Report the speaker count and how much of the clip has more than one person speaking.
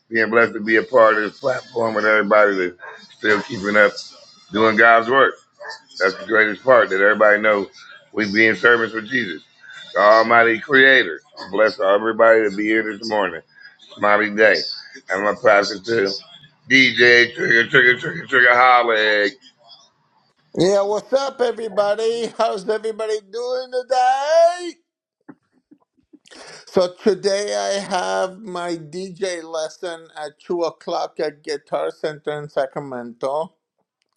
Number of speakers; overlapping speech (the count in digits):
2, no overlap